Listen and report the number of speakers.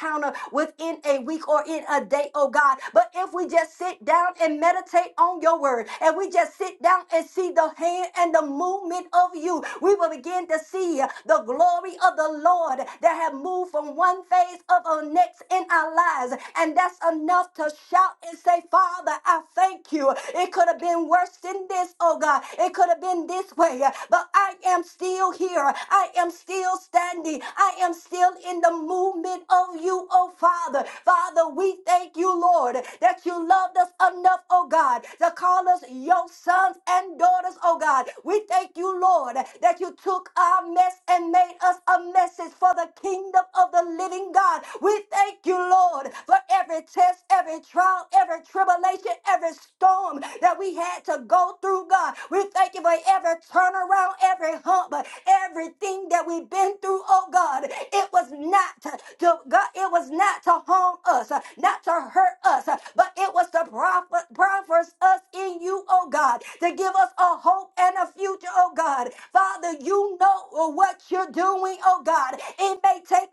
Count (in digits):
1